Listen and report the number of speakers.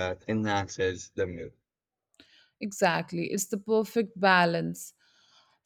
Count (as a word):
two